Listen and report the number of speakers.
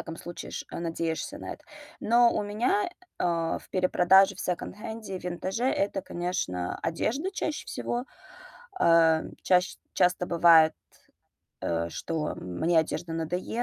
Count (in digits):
1